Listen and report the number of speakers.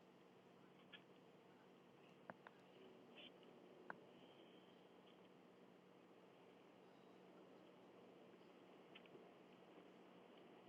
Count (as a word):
zero